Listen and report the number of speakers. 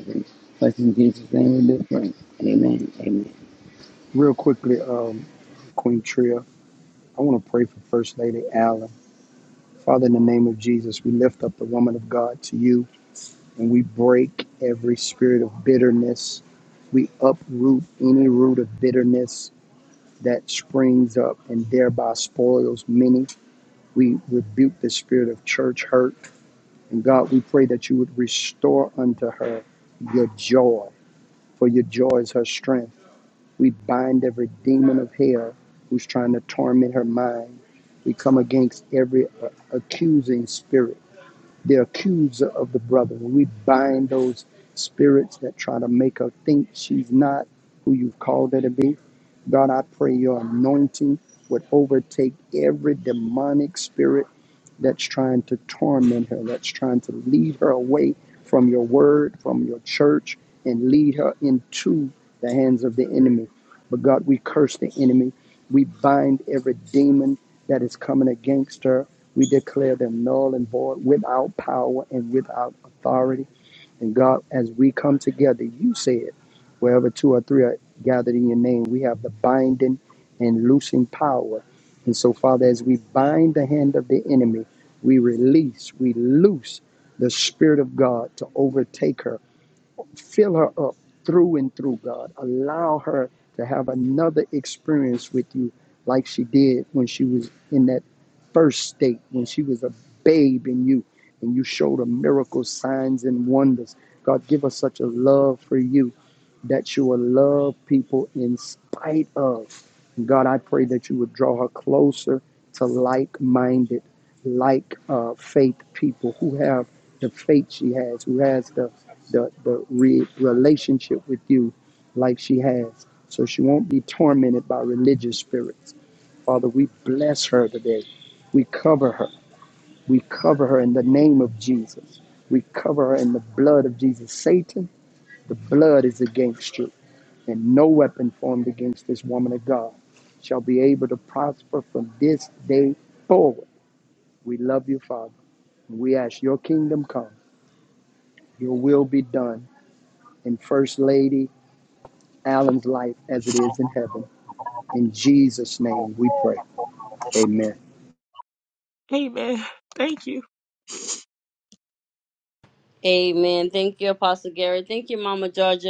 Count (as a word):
four